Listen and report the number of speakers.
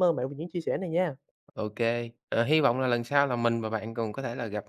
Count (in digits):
2